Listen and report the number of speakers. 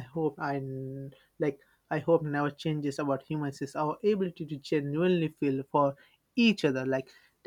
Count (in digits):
1